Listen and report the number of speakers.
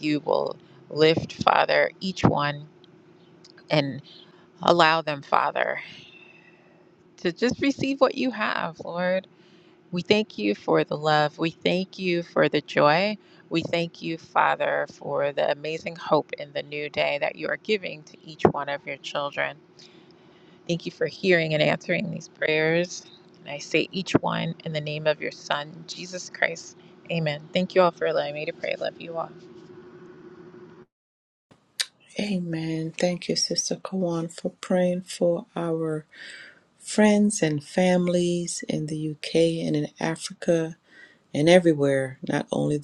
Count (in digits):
2